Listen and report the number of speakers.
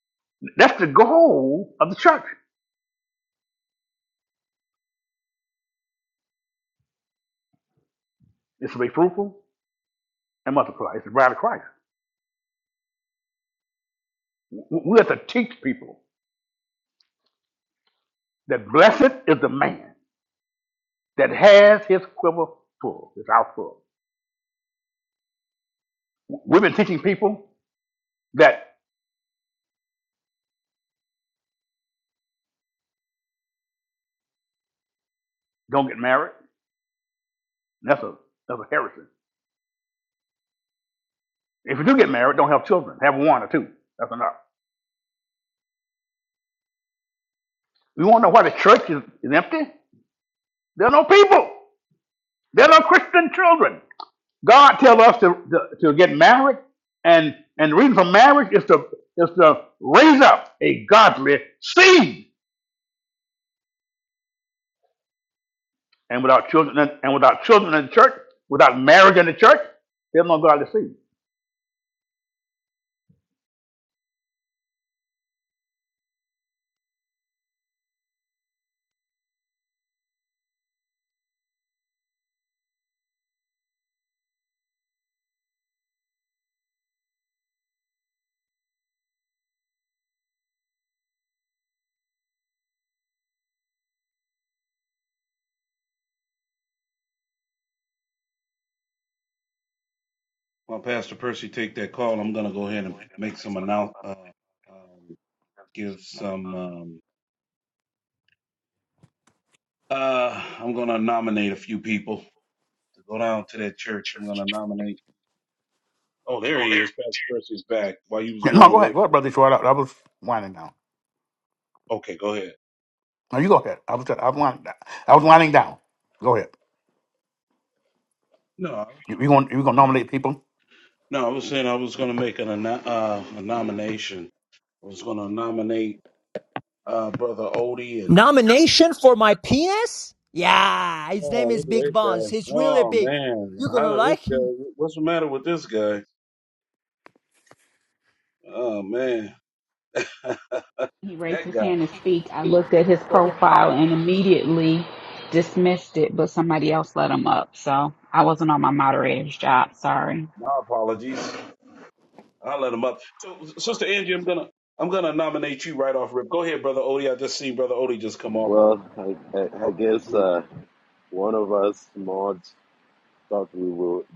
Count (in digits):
5